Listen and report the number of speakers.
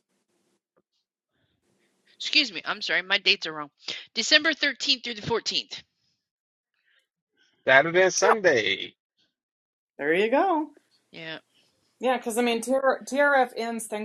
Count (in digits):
3